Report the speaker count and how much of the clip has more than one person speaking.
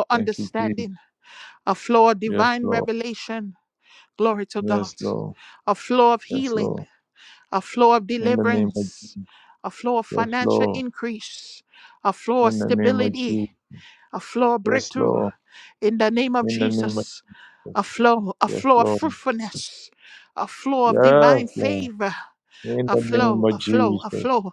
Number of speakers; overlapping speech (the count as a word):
two, about 33%